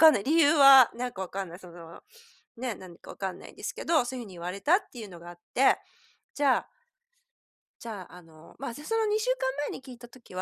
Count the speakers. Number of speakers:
one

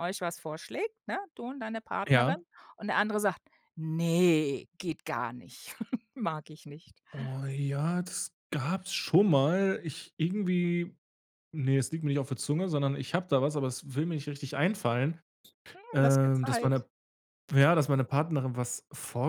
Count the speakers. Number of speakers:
two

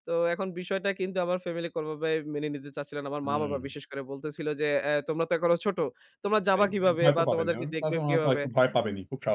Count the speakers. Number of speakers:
two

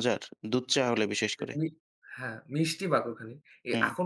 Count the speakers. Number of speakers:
two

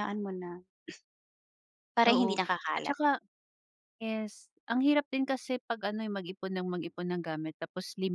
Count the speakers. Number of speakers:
two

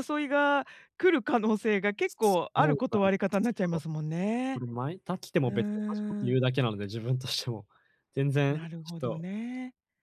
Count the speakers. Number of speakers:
two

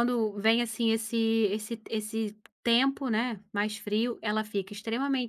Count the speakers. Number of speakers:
one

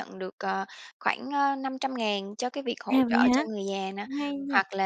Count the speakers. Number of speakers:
two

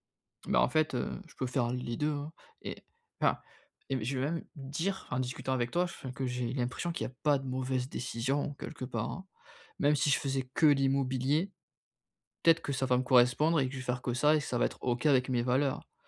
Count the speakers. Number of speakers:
one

